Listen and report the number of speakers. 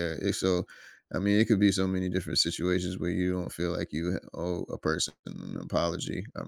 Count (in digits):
1